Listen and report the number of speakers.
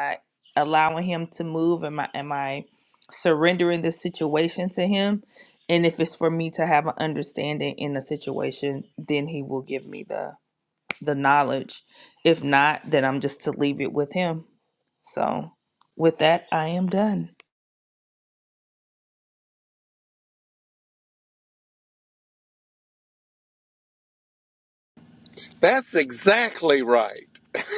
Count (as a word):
two